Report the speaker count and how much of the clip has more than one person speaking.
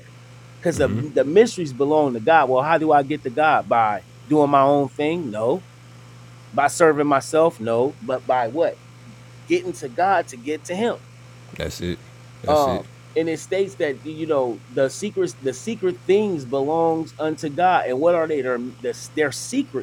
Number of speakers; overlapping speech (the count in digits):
2, about 3%